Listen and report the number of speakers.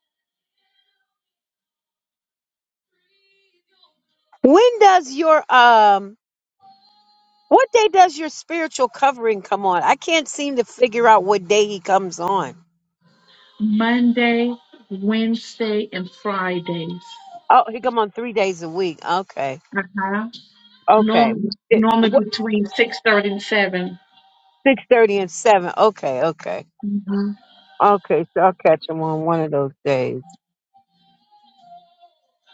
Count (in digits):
2